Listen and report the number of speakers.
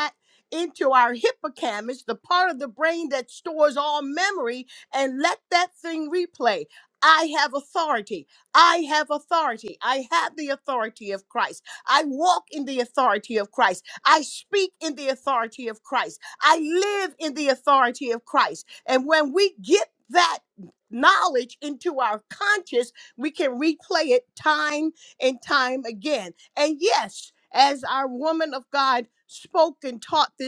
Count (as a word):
one